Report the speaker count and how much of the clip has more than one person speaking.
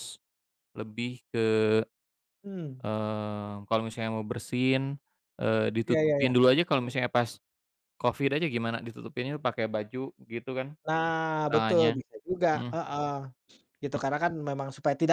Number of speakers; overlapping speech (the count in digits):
2, about 8%